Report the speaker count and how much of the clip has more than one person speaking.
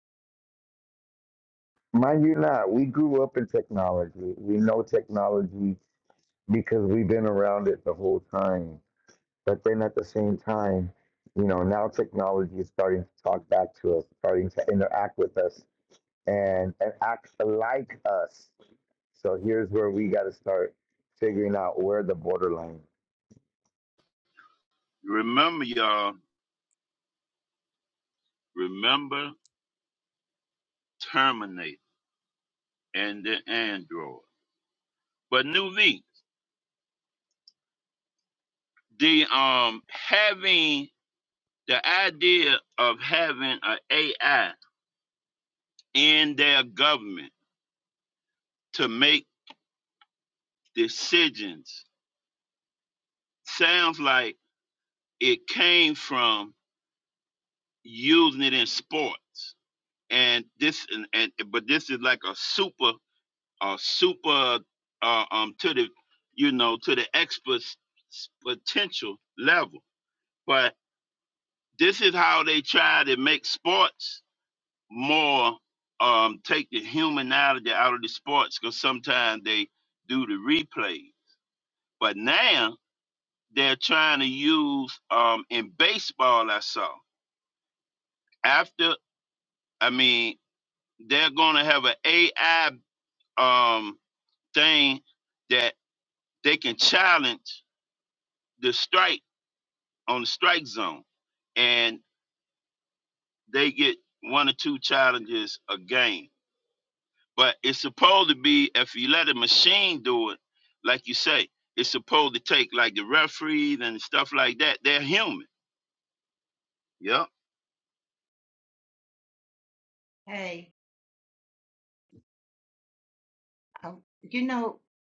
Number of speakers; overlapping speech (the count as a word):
three, no overlap